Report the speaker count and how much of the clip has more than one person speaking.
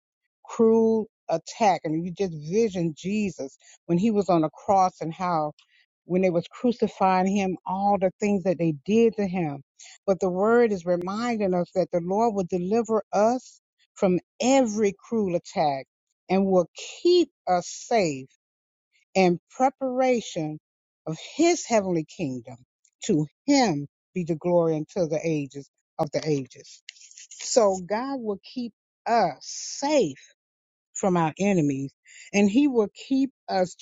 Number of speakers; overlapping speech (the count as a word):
one, no overlap